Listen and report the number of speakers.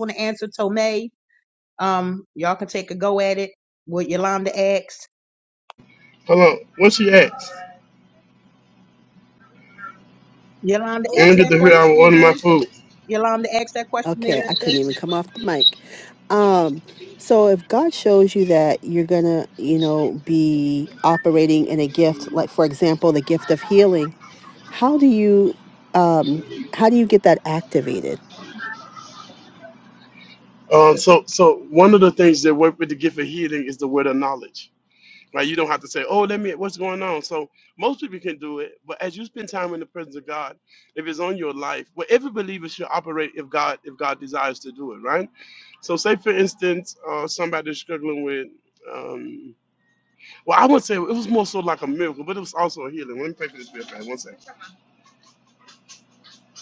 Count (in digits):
3